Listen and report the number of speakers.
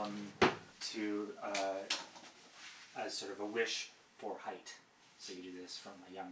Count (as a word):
one